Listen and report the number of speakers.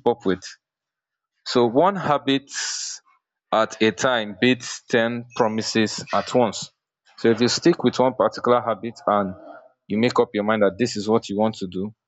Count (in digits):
1